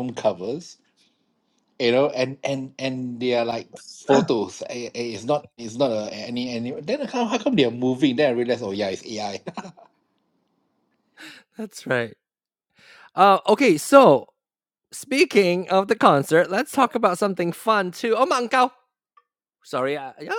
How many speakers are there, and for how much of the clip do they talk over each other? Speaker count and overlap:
2, no overlap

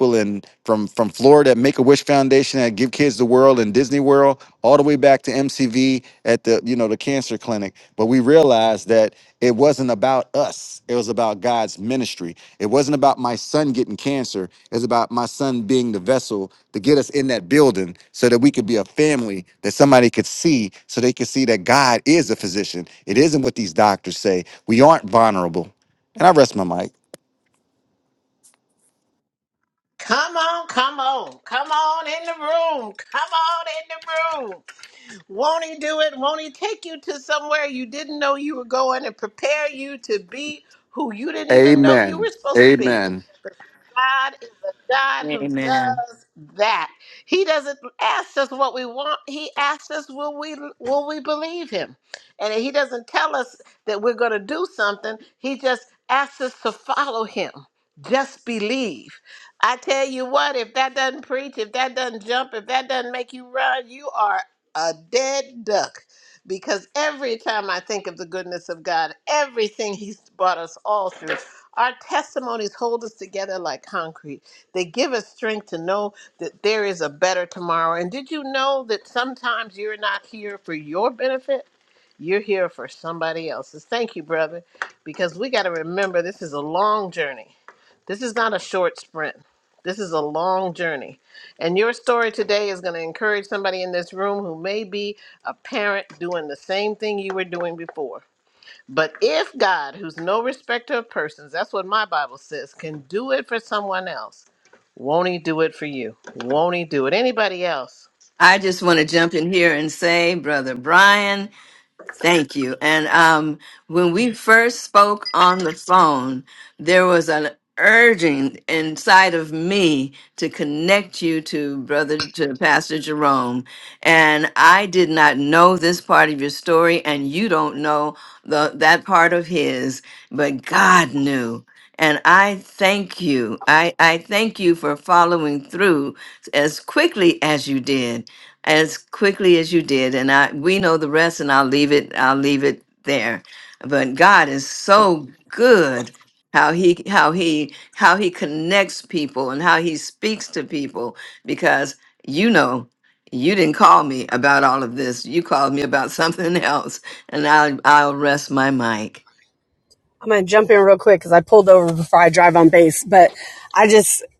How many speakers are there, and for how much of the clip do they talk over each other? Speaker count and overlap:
4, about 1%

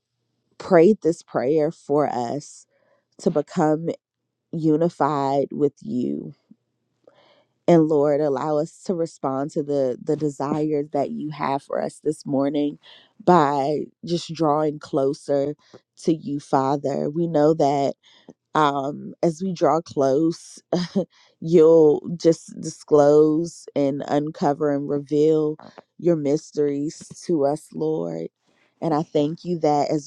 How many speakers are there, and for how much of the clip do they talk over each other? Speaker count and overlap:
1, no overlap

